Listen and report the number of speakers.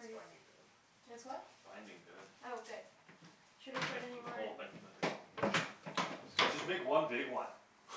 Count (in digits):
3